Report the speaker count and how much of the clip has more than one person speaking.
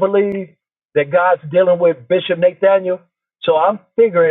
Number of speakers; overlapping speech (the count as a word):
one, no overlap